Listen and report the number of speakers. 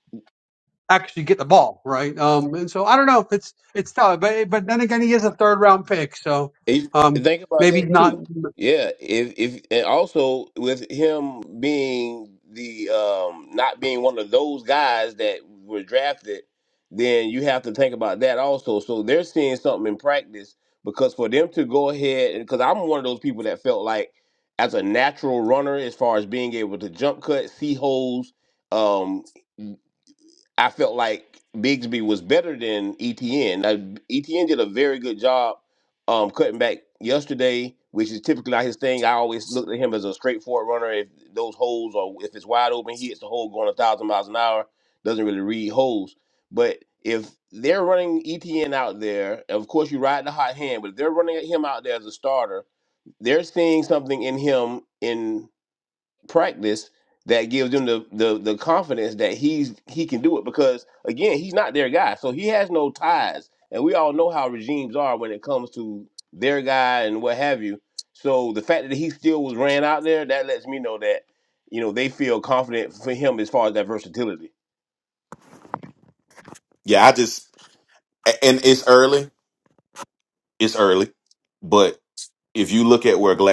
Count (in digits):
3